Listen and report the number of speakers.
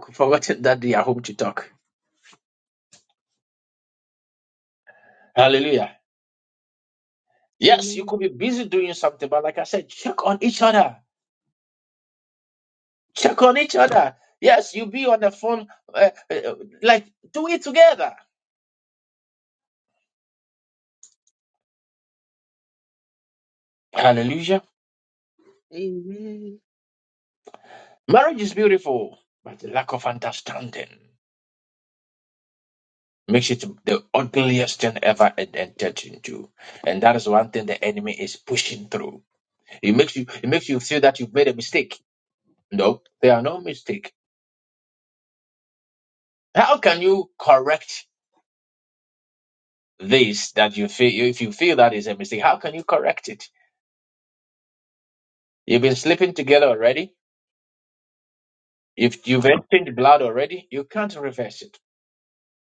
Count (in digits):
2